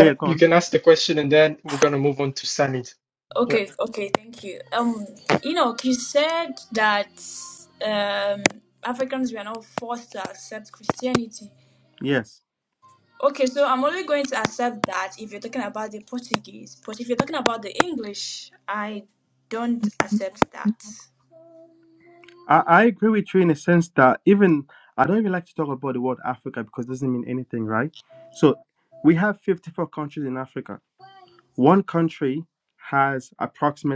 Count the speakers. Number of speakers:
3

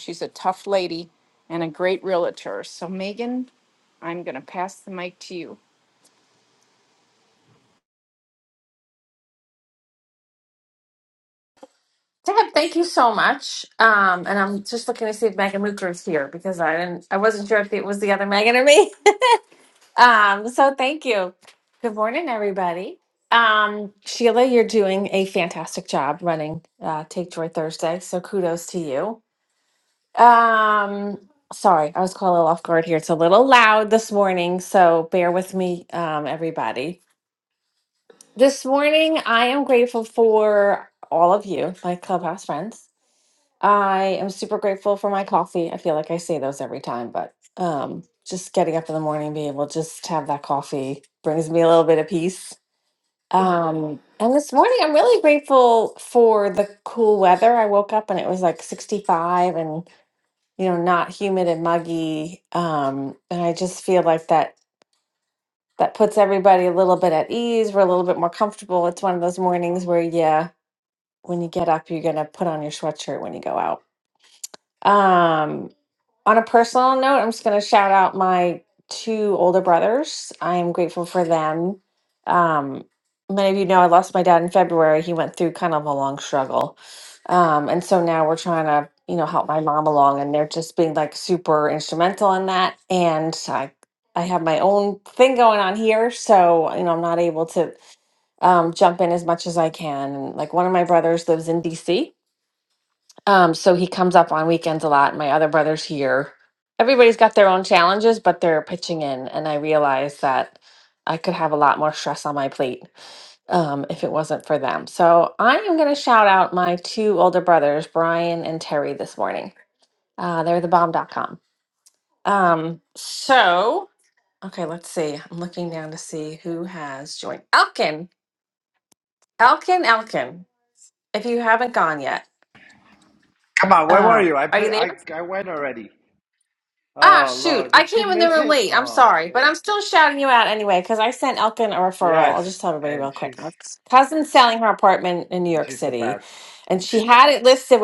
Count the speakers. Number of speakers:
3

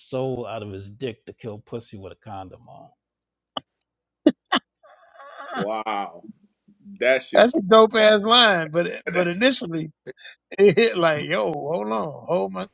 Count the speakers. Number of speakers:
3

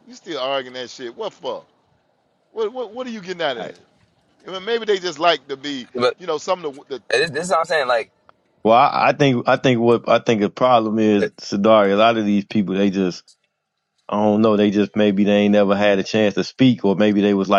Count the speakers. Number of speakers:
3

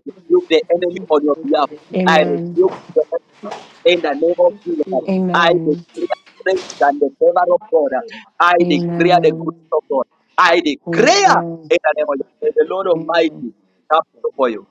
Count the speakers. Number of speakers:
2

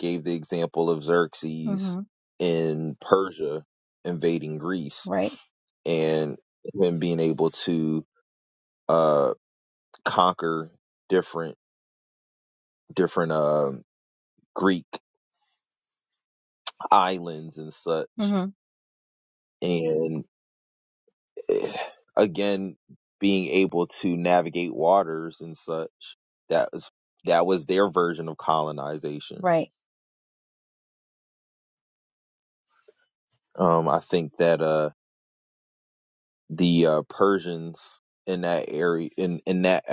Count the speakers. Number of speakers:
2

